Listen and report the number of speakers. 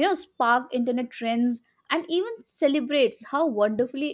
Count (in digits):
1